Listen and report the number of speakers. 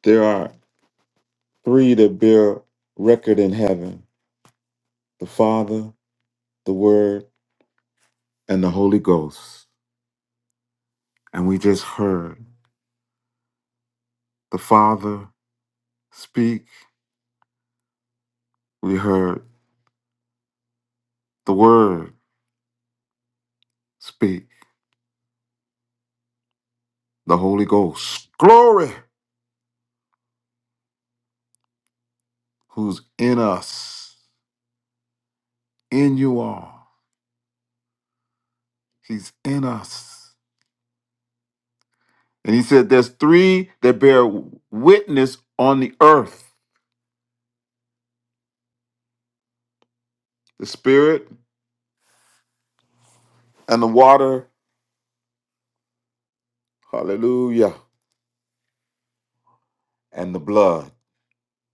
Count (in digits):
1